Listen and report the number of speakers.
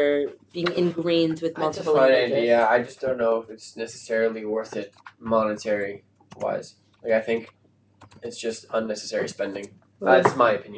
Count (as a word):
two